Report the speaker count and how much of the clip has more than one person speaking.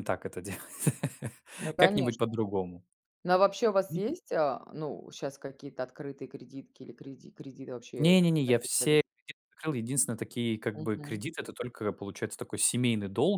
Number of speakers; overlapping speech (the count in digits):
2, about 7%